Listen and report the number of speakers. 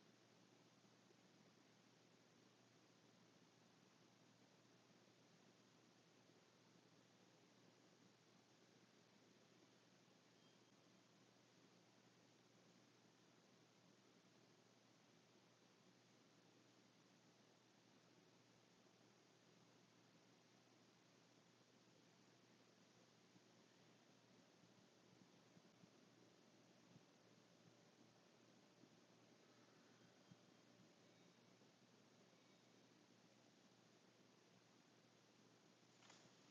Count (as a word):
zero